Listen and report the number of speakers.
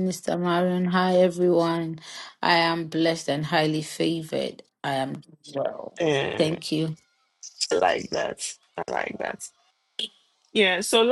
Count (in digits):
2